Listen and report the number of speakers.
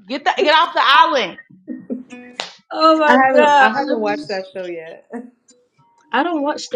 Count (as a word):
three